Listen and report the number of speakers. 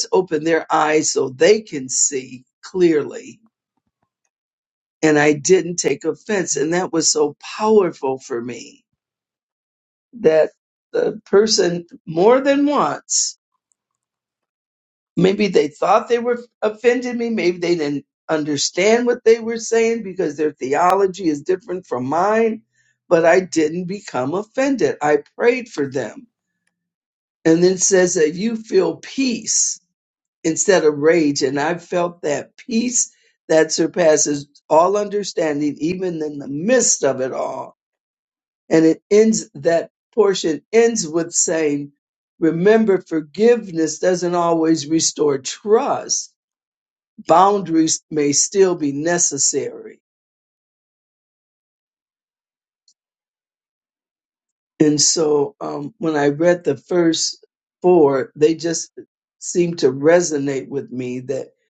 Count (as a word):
one